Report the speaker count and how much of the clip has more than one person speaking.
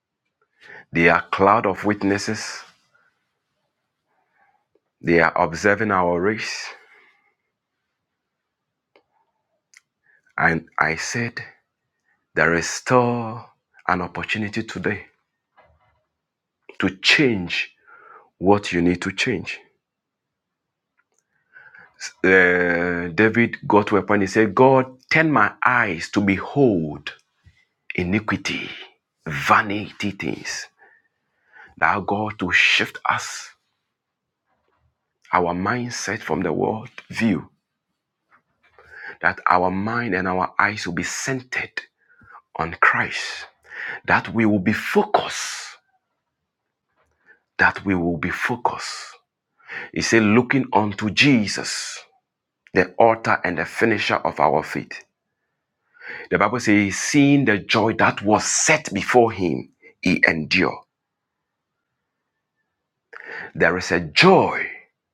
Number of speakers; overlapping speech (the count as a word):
one, no overlap